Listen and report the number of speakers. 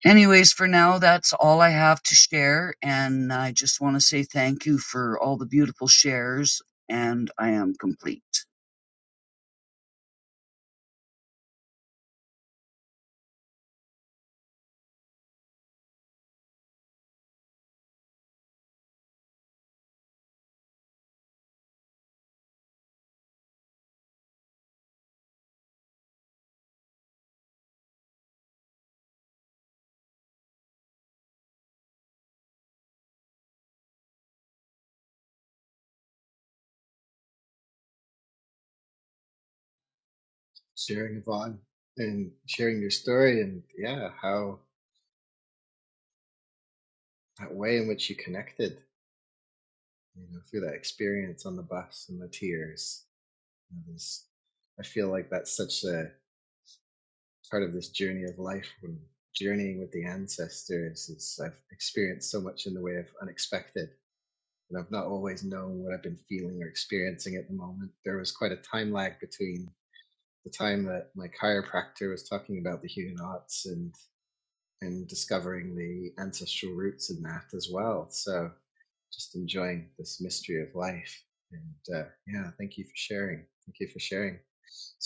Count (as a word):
two